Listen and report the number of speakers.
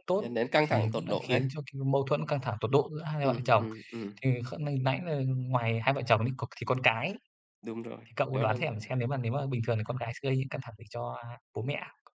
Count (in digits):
2